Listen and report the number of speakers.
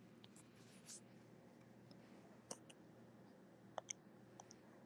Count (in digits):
0